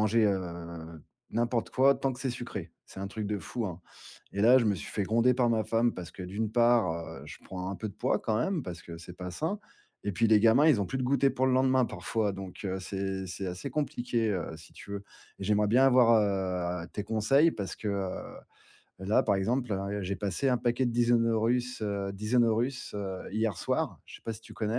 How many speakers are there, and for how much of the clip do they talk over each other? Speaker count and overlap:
one, no overlap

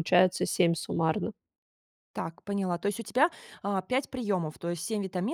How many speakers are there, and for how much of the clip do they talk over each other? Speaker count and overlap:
two, no overlap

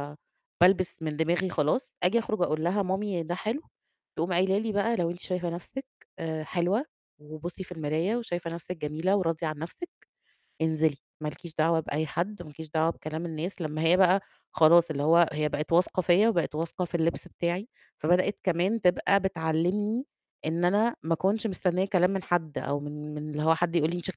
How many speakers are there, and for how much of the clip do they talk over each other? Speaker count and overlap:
one, no overlap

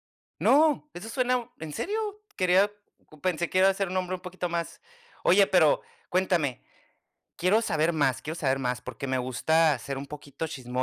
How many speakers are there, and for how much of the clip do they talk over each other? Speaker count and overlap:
one, no overlap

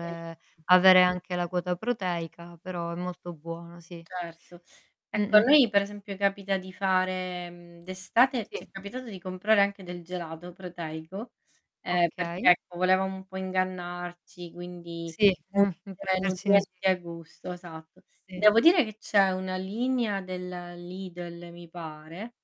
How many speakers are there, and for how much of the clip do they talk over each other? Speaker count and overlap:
two, about 7%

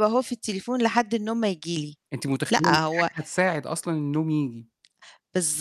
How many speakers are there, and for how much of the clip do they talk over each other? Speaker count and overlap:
two, about 10%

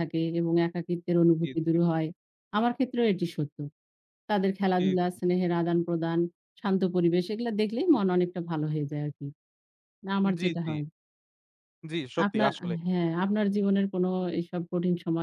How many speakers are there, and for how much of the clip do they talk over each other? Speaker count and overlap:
two, about 8%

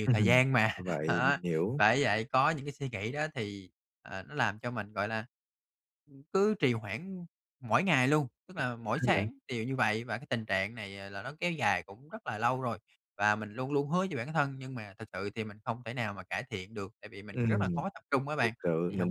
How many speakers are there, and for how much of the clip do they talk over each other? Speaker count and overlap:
two, about 7%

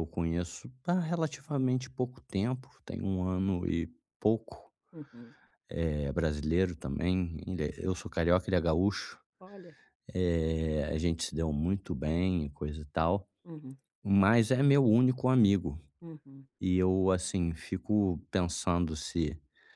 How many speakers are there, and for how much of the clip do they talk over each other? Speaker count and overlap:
two, no overlap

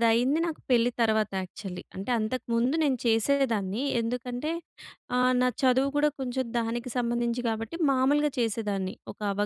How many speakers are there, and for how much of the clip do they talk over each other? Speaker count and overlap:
one, no overlap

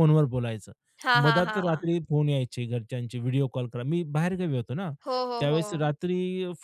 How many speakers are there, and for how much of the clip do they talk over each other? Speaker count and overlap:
two, about 17%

